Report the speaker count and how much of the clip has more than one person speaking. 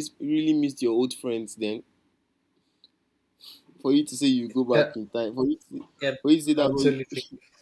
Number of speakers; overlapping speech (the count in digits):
2, about 6%